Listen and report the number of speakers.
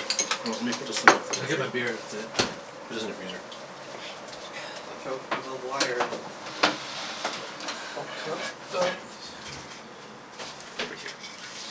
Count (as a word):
three